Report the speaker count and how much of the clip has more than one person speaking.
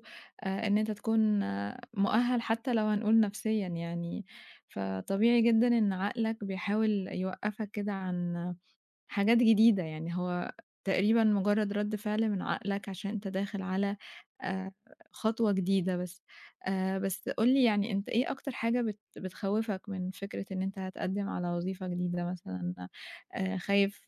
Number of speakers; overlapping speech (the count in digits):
1, no overlap